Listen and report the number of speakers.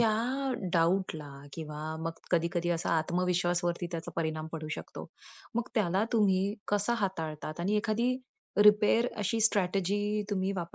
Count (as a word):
one